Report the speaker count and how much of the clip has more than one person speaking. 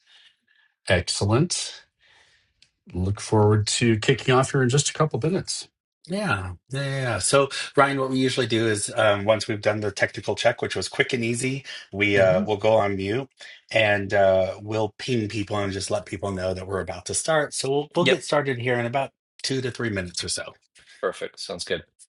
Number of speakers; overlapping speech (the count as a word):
three, about 2%